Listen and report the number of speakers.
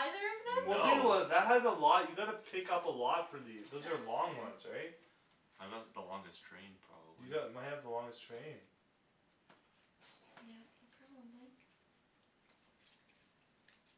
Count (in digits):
3